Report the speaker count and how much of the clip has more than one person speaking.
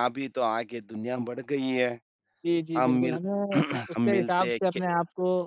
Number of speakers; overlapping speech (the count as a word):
two, about 25%